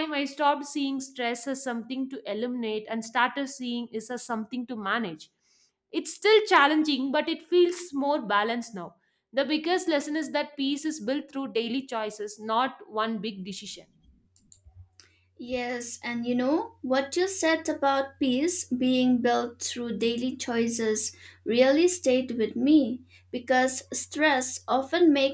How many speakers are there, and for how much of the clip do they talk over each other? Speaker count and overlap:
2, no overlap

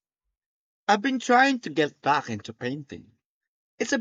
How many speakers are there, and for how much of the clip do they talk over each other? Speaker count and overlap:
1, no overlap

